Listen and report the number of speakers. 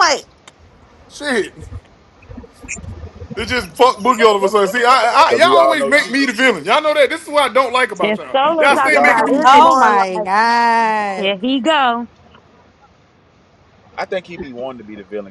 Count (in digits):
4